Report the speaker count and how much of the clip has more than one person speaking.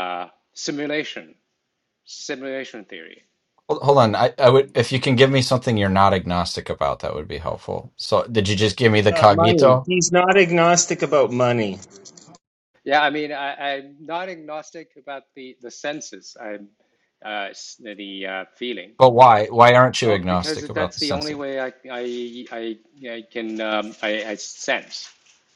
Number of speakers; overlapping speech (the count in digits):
3, about 9%